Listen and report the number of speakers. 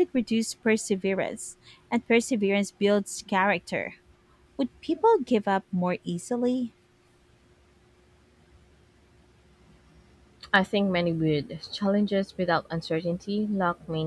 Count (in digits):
2